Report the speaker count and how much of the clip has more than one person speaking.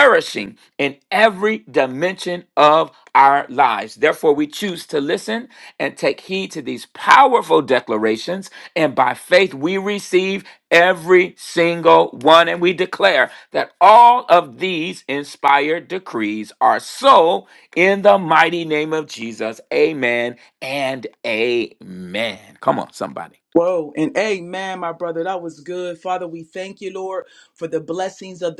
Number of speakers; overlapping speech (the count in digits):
2, no overlap